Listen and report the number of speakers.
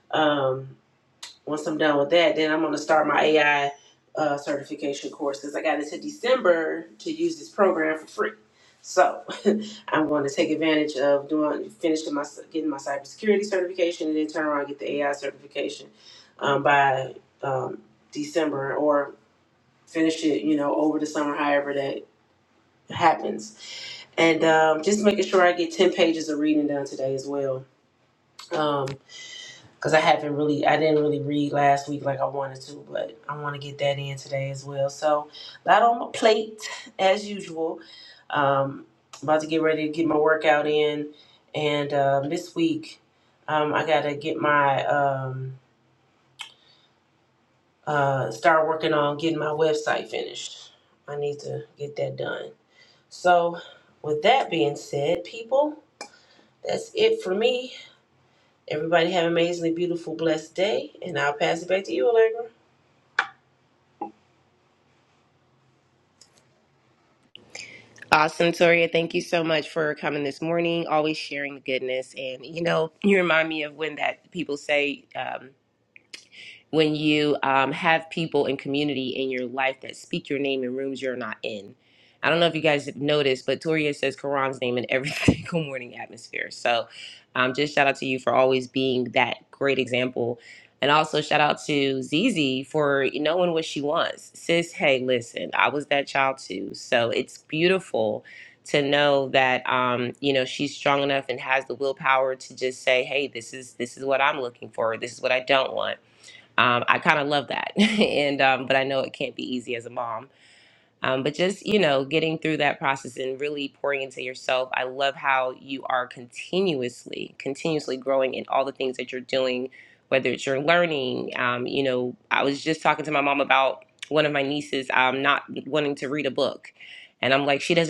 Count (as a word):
two